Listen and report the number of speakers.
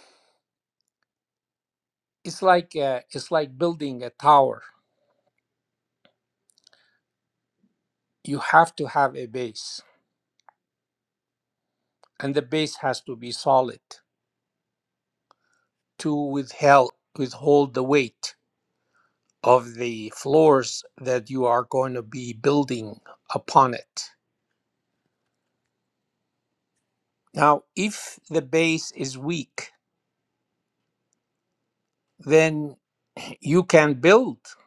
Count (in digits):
1